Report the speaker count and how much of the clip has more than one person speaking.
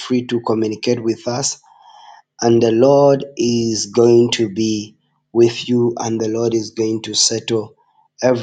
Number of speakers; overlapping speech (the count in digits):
1, no overlap